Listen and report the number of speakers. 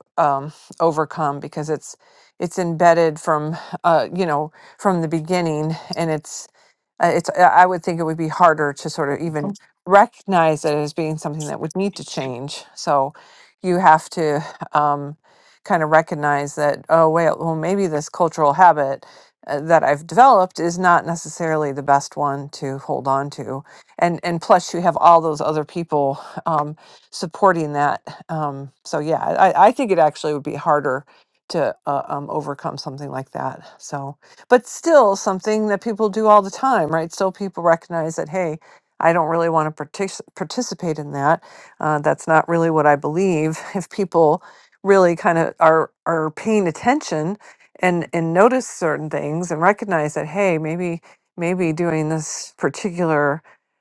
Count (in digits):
1